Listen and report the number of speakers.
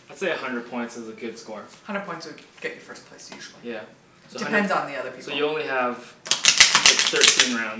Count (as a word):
two